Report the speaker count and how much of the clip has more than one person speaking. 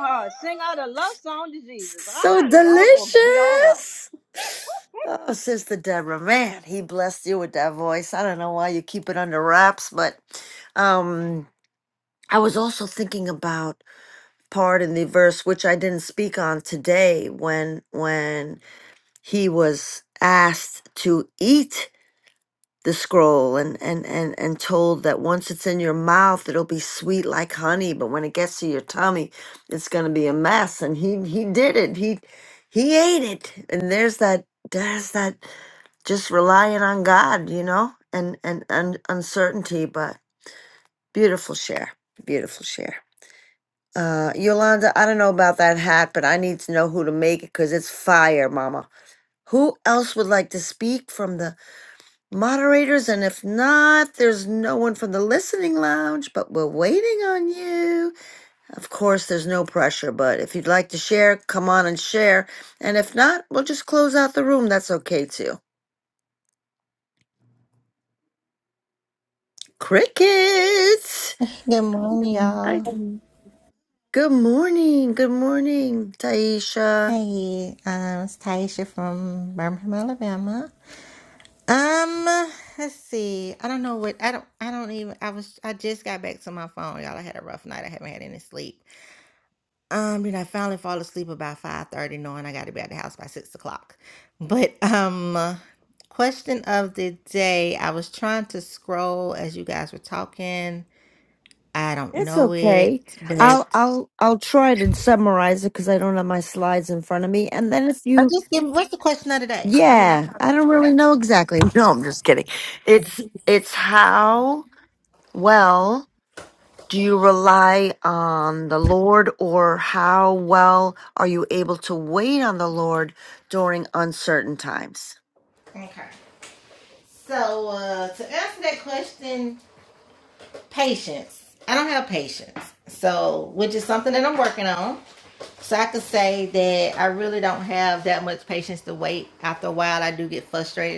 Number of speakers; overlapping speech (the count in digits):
3, about 3%